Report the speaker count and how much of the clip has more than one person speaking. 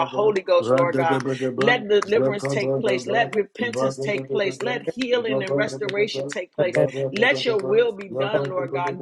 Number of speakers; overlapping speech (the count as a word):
two, about 53%